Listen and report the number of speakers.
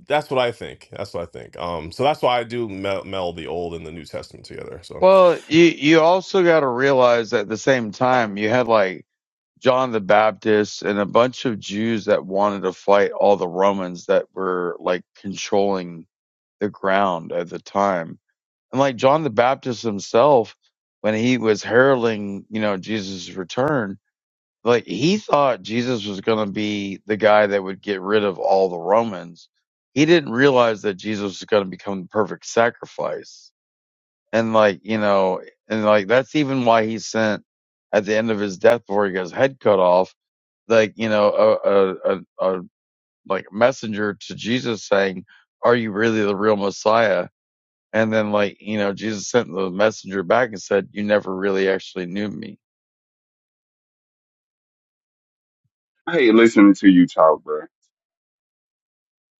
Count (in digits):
3